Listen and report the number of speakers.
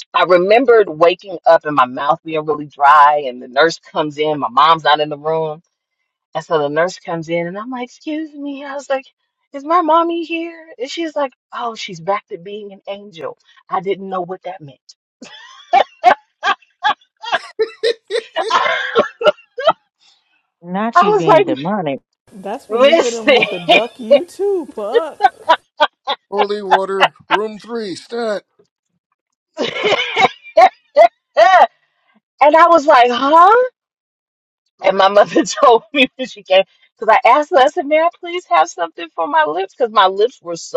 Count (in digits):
4